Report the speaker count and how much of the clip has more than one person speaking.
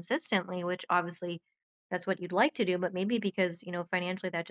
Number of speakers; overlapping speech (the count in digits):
1, no overlap